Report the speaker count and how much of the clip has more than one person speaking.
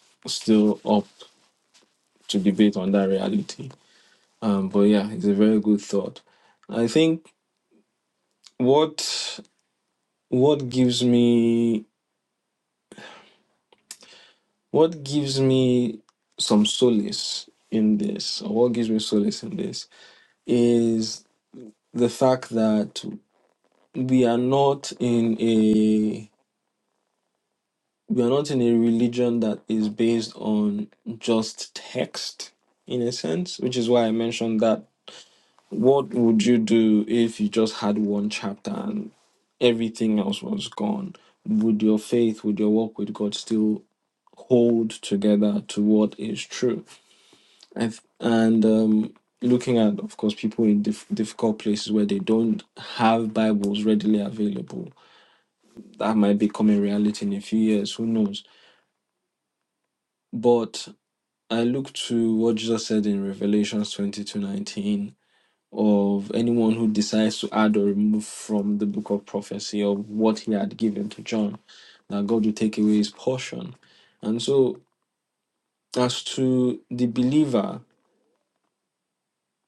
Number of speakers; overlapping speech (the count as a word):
one, no overlap